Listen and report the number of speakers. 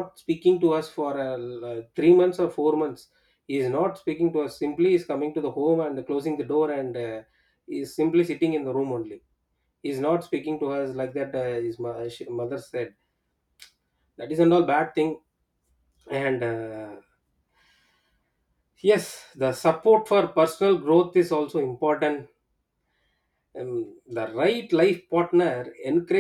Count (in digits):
1